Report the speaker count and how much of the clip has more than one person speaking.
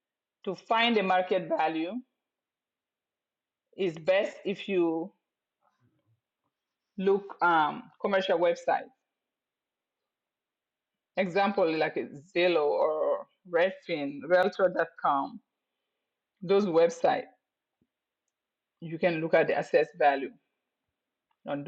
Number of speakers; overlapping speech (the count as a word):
one, no overlap